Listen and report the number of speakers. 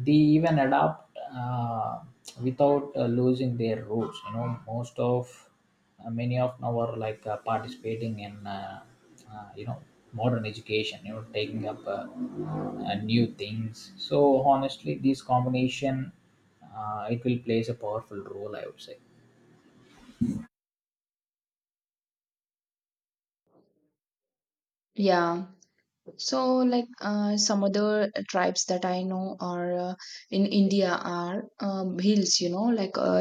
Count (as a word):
two